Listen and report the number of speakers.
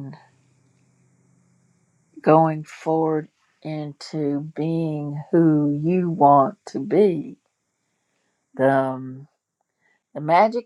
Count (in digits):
1